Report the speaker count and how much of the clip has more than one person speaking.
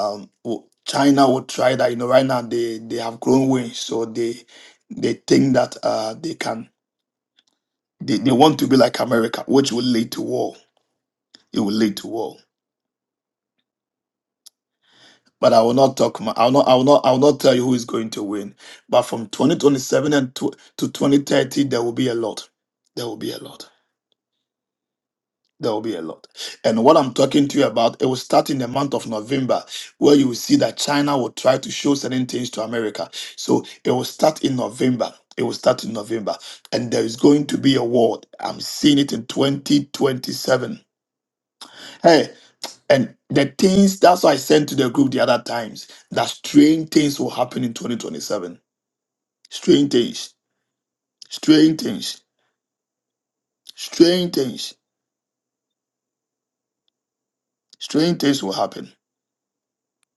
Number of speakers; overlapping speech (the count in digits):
1, no overlap